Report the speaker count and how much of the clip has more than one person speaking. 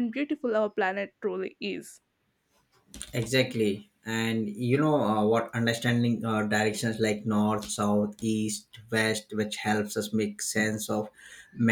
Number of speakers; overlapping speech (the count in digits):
2, no overlap